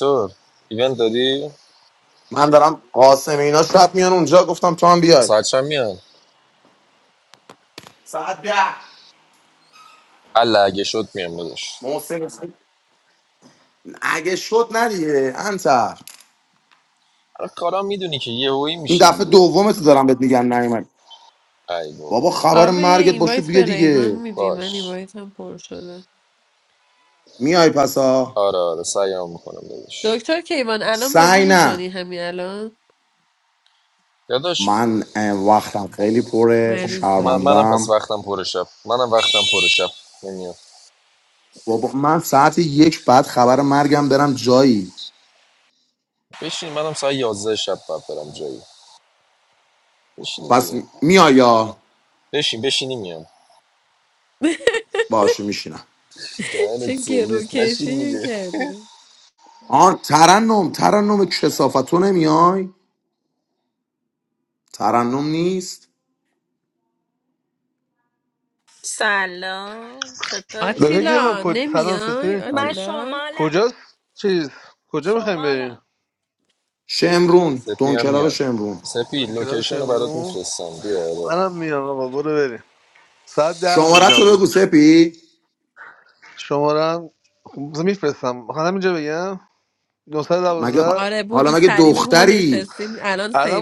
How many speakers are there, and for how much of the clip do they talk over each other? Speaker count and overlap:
5, about 17%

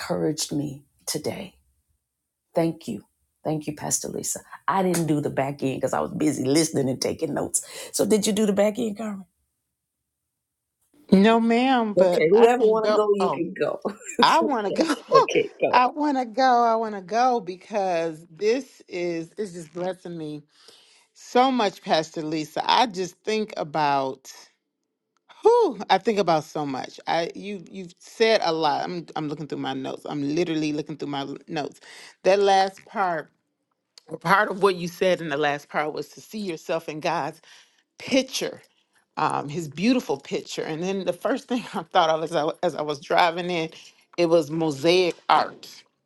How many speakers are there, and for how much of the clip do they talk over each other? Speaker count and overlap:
2, about 5%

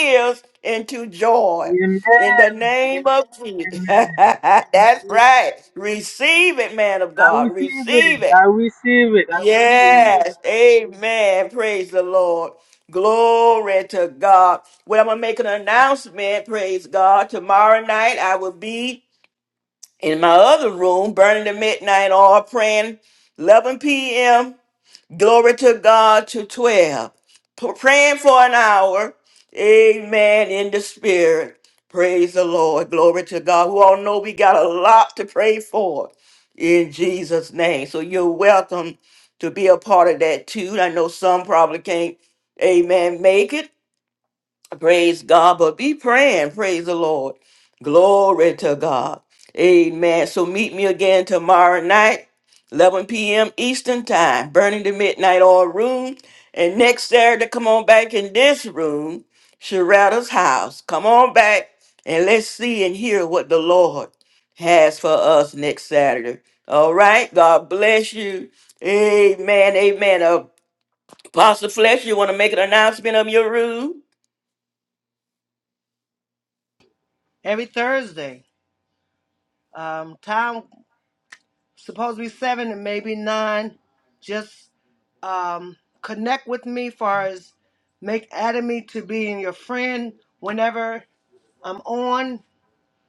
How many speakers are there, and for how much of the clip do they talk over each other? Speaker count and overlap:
3, about 3%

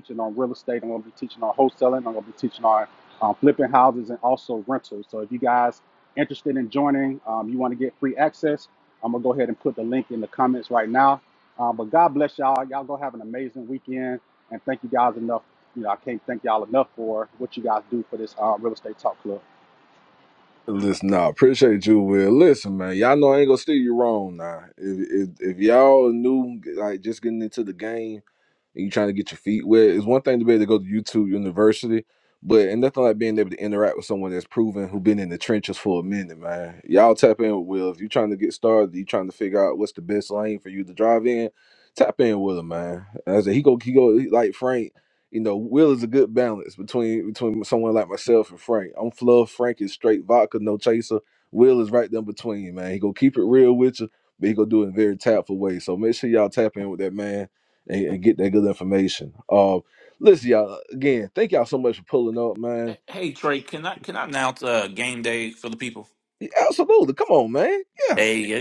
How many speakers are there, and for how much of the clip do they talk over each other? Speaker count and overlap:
3, under 1%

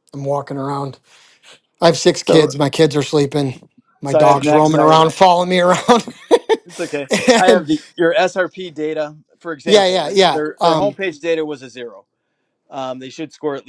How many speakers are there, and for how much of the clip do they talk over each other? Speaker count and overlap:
2, about 20%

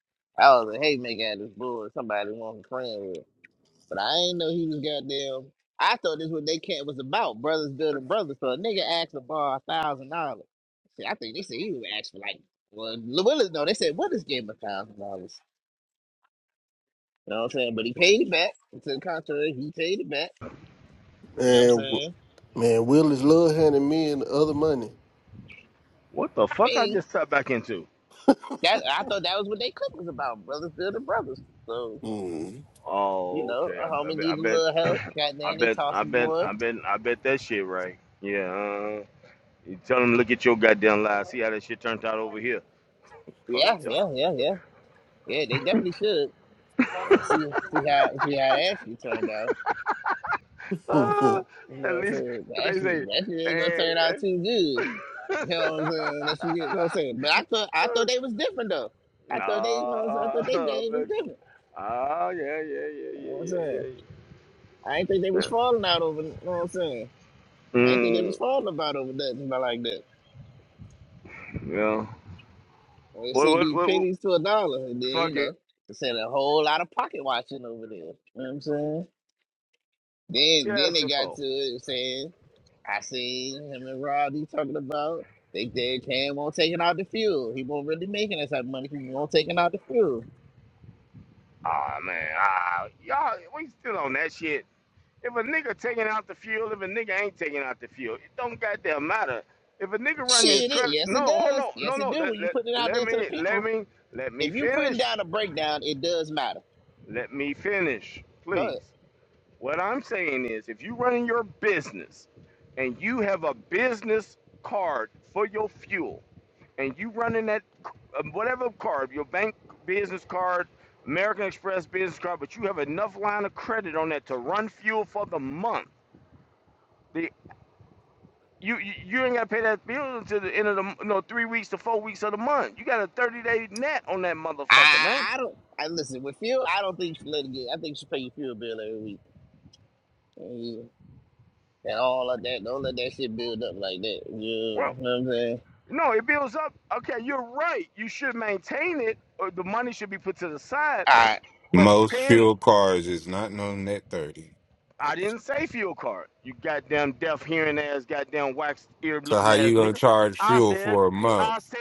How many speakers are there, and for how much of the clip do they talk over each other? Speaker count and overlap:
4, about 11%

